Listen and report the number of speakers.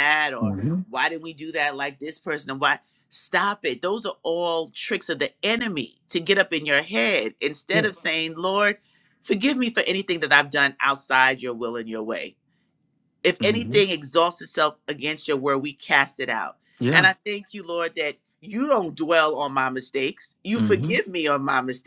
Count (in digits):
2